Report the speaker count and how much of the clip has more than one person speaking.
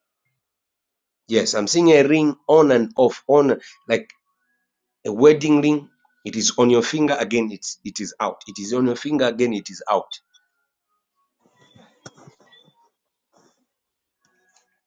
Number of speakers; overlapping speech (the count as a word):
one, no overlap